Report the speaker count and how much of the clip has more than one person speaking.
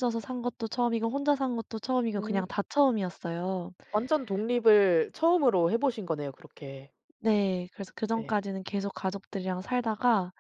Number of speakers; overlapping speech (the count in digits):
2, about 4%